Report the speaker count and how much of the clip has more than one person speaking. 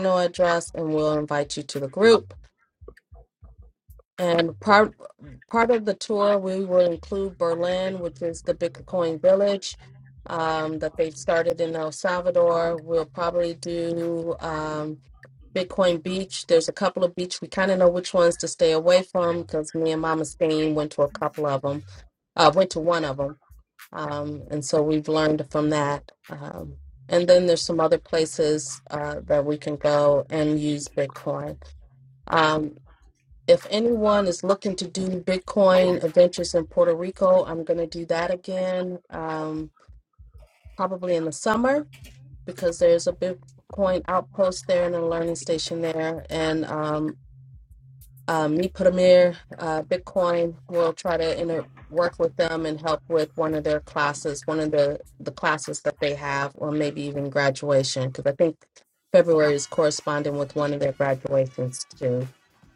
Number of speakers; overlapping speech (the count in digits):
1, no overlap